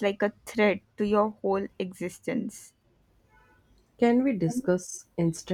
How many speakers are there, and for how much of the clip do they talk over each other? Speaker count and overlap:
two, no overlap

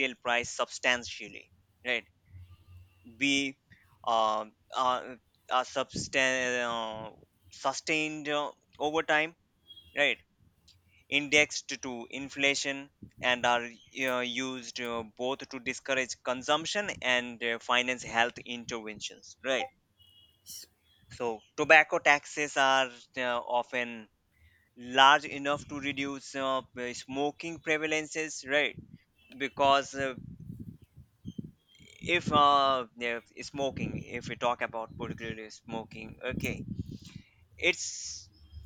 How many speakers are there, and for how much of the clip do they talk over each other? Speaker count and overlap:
one, no overlap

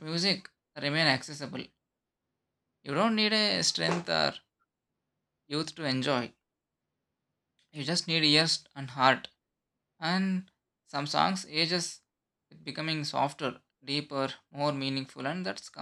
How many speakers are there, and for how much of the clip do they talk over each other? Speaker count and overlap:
one, no overlap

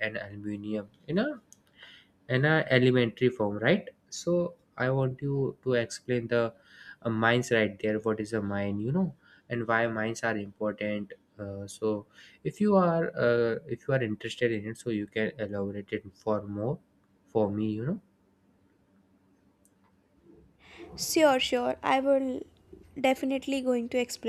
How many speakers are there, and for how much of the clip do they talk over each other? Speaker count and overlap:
two, no overlap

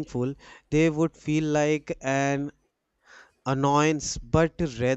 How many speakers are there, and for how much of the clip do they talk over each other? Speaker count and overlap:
one, no overlap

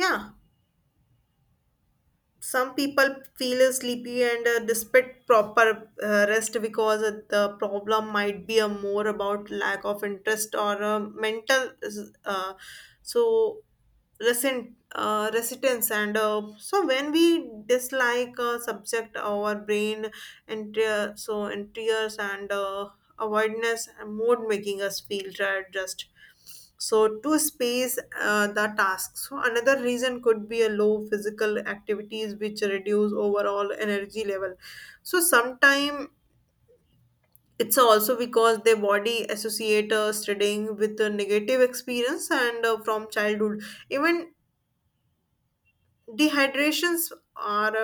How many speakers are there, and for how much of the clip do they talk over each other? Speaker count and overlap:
one, no overlap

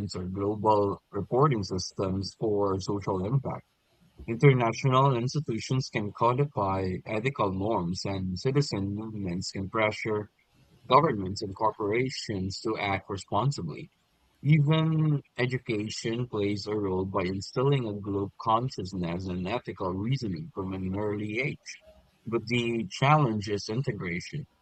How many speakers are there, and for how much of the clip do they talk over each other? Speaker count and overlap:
one, no overlap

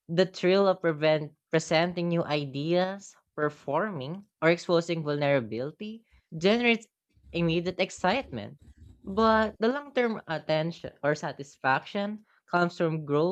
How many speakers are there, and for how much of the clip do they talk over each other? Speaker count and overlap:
one, no overlap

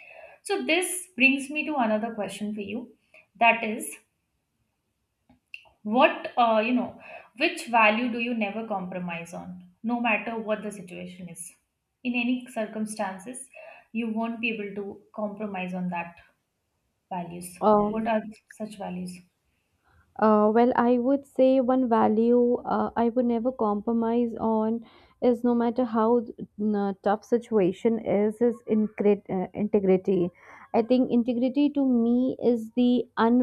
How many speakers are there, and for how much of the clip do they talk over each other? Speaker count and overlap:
two, about 1%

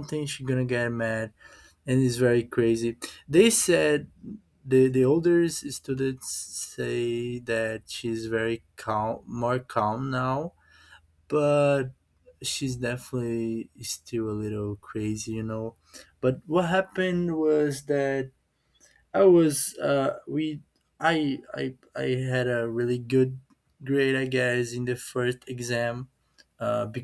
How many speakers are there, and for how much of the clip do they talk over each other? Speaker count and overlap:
one, no overlap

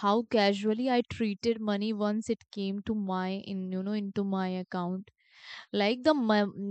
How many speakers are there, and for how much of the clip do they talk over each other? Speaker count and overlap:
one, no overlap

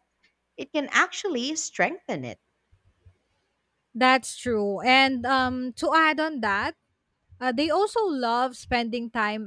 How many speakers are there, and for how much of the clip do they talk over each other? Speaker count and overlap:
two, no overlap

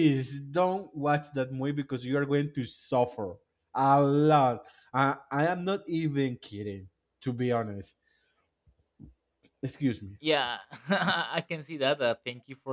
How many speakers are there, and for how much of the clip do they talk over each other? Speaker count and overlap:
two, no overlap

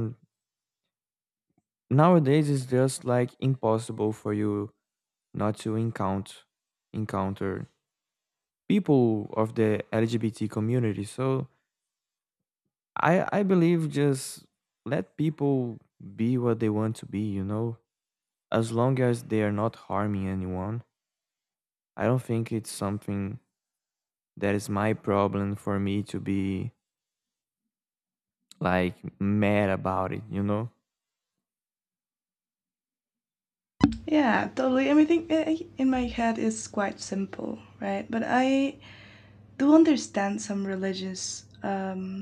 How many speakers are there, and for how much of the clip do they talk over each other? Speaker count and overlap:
two, no overlap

